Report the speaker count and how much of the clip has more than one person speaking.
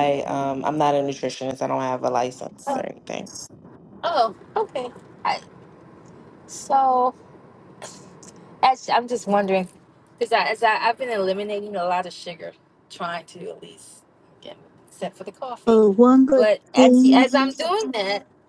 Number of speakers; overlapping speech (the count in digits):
3, about 5%